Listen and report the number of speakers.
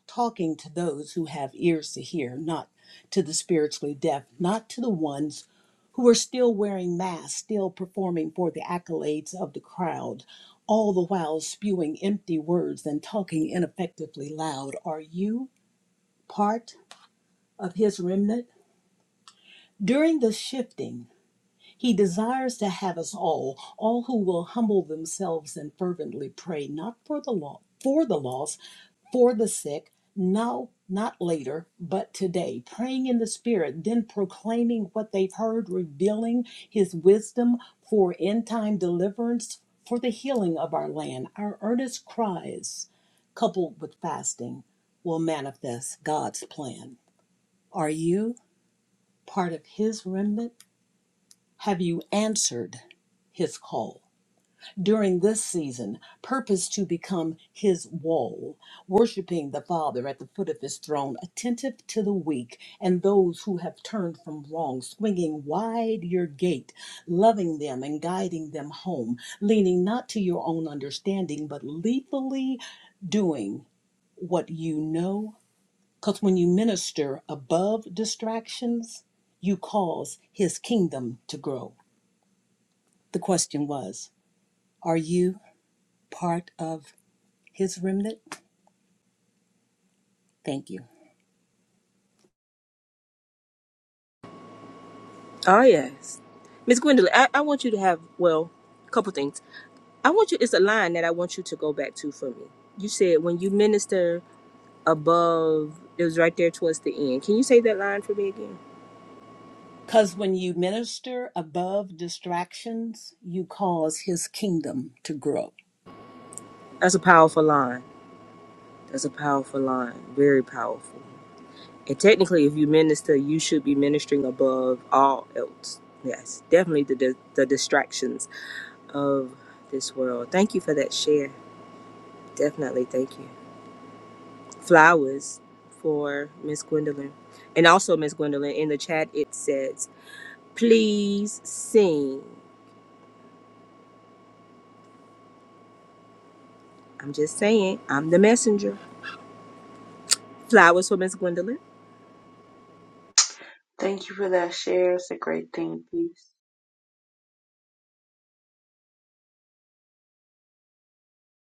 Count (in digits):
3